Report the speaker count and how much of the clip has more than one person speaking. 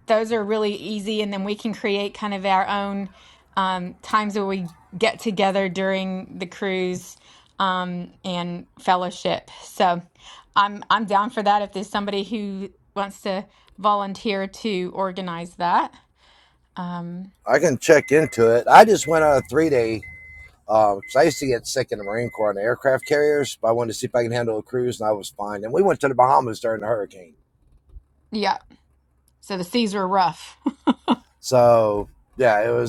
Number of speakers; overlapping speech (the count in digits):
2, no overlap